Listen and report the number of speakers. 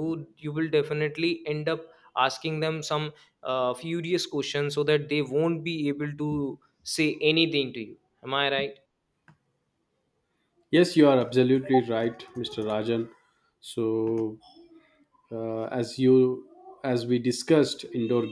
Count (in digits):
2